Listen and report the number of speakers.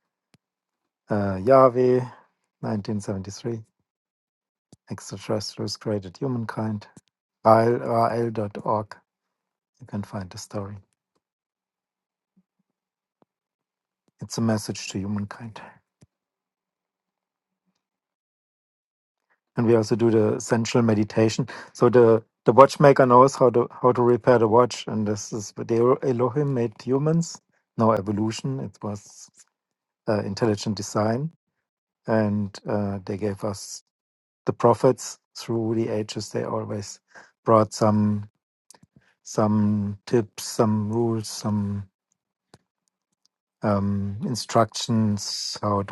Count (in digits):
1